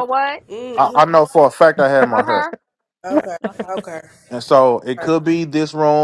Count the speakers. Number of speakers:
3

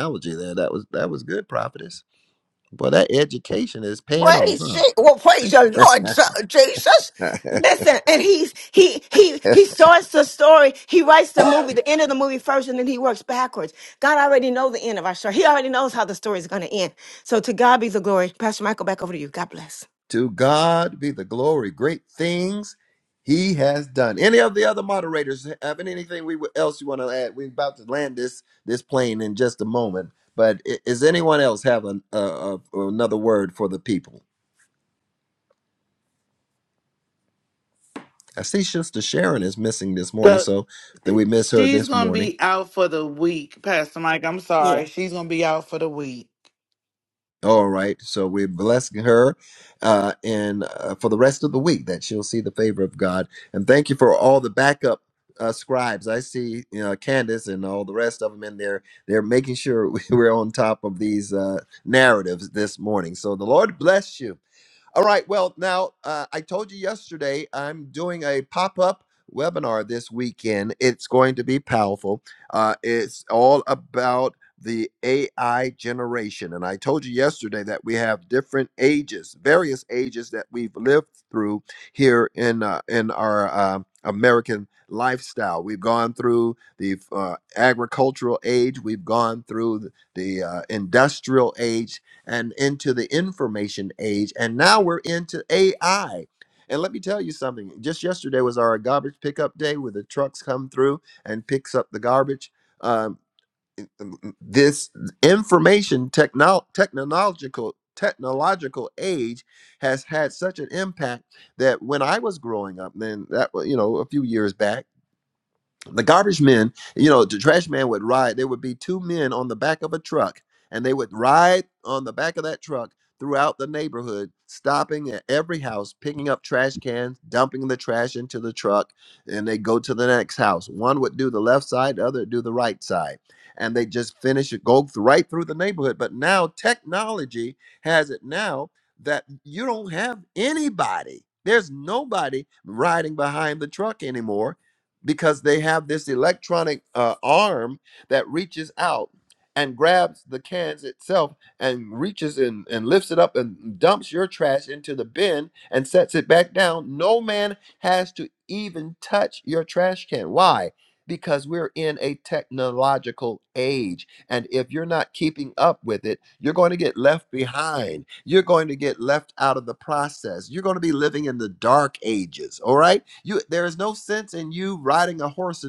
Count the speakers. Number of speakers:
3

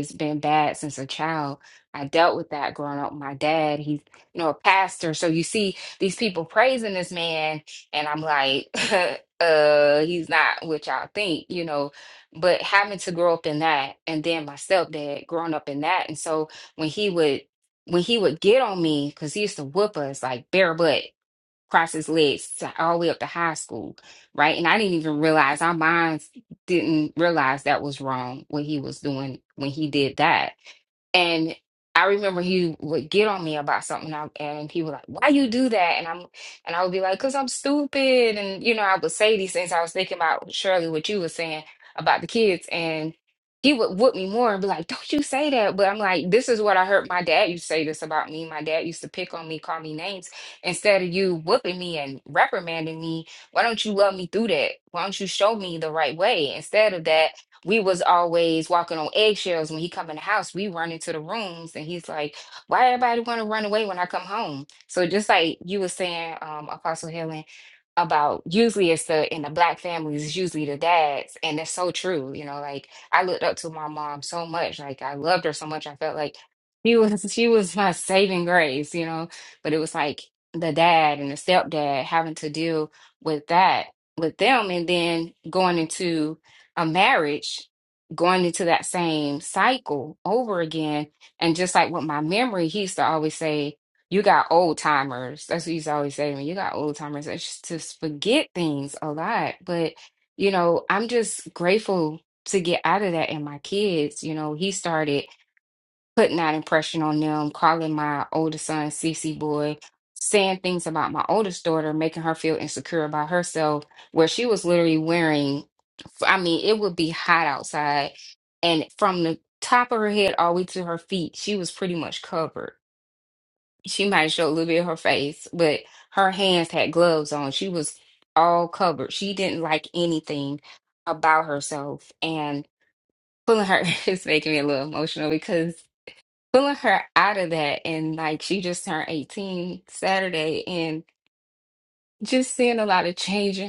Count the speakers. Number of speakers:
1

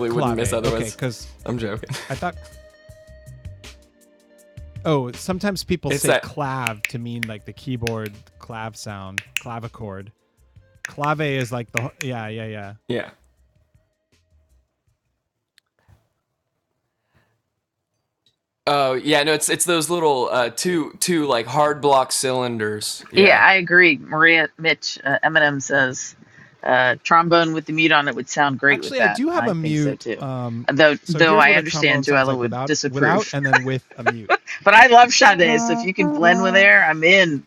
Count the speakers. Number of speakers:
3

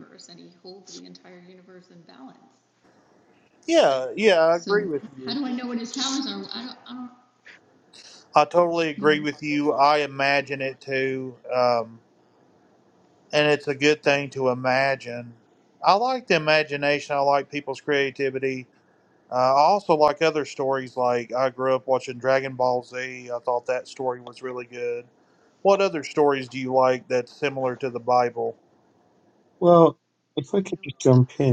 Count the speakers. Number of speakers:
3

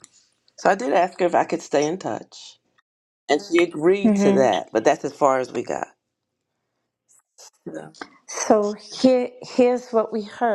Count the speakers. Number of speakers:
2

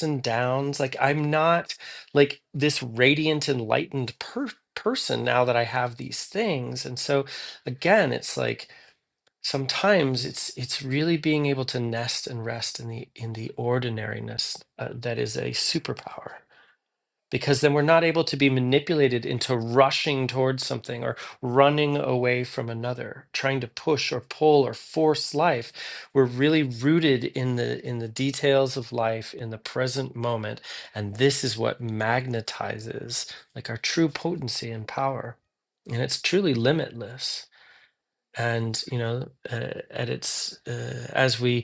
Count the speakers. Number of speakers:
1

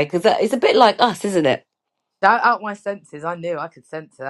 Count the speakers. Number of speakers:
2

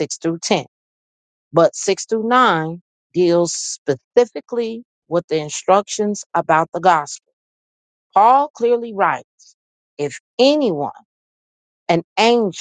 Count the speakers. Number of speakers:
1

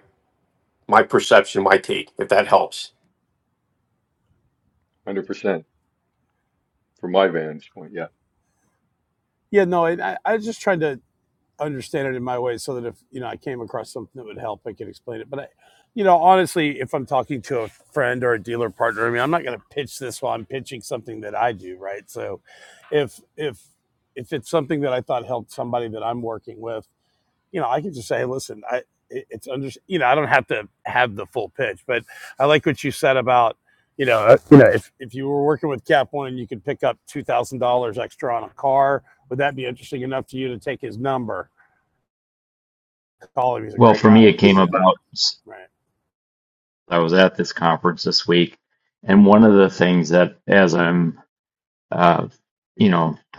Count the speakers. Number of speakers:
4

